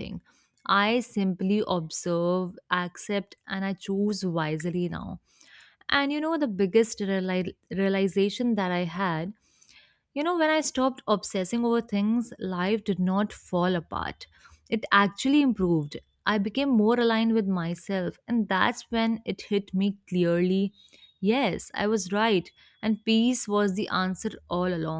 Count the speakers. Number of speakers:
one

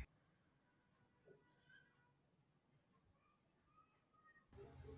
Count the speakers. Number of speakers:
zero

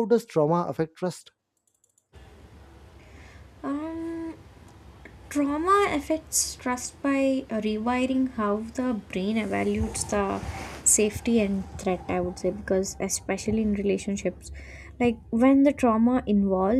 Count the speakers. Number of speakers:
two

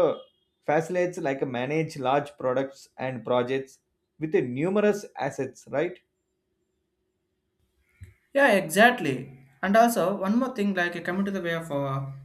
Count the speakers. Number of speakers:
two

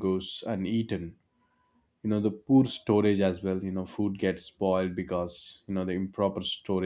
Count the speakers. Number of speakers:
one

